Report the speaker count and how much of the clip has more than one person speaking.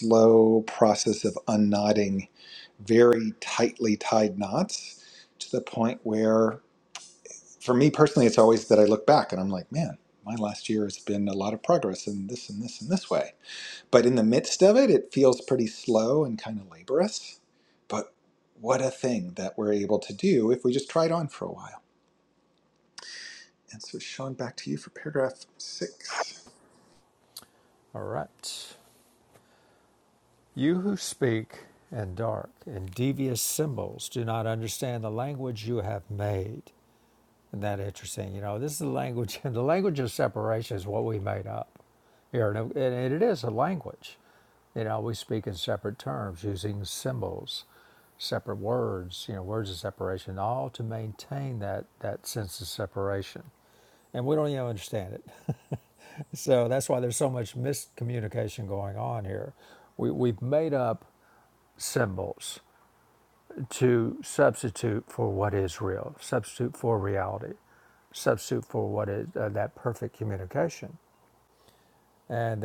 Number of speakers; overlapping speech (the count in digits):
2, no overlap